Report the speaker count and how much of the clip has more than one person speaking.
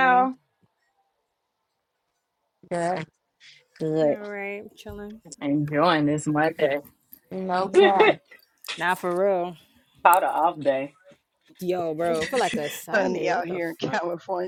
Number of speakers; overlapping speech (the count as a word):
four, about 10%